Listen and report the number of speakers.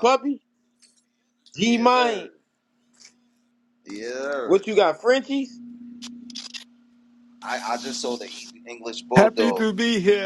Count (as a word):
three